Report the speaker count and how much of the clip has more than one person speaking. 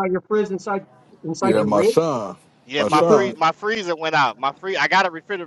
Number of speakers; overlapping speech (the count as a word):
three, about 20%